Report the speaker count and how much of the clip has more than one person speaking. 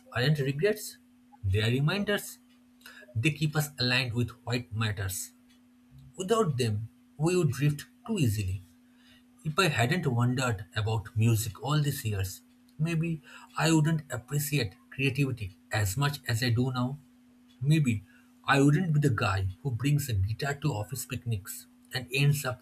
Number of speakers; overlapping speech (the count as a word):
one, no overlap